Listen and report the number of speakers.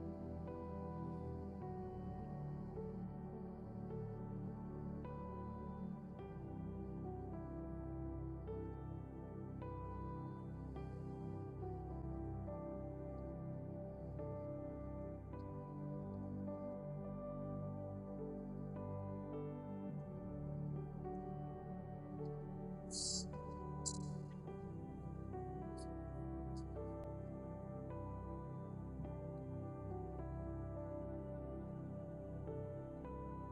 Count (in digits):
0